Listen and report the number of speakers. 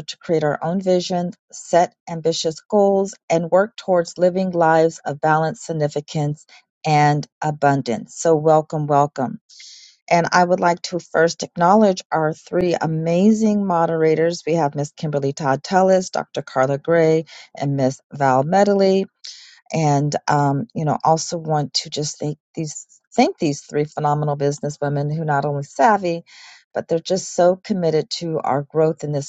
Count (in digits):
1